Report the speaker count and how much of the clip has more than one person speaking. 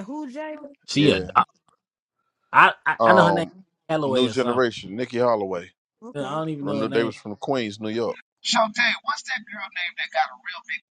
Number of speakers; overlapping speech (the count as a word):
four, about 21%